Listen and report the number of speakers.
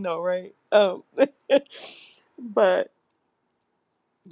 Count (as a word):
one